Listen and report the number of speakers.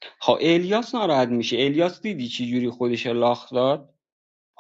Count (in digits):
1